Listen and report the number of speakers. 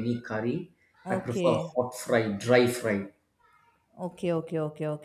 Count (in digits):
2